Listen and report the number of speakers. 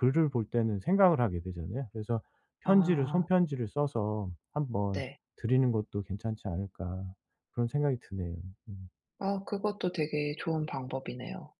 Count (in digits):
2